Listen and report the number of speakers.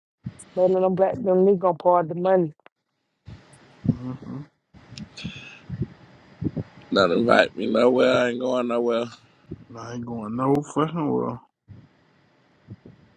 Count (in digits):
3